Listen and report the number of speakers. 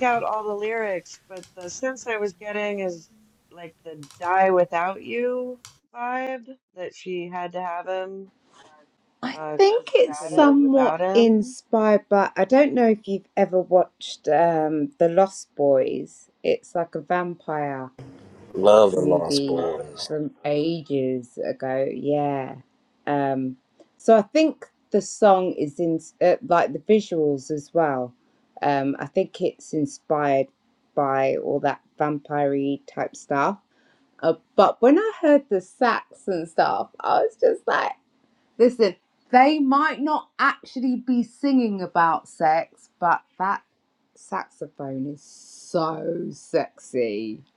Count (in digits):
3